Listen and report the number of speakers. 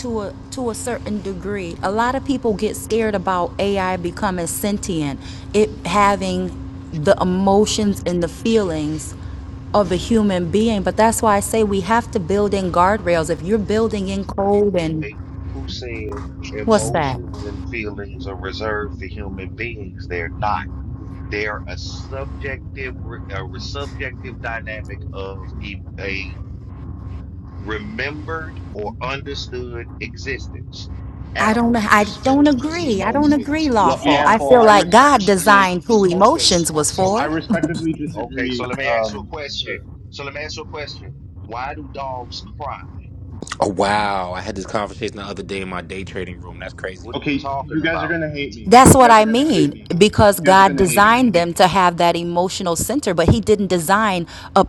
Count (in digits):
4